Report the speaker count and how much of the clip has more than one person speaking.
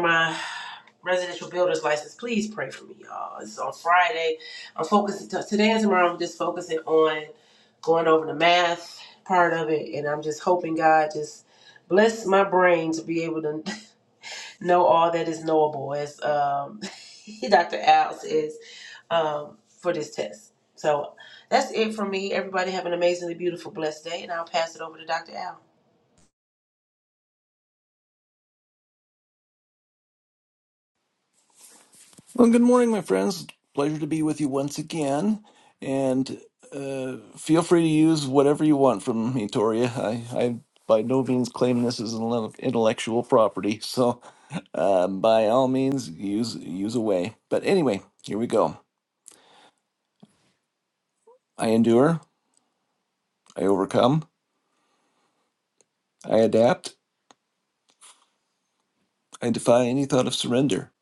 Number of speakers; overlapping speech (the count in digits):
2, no overlap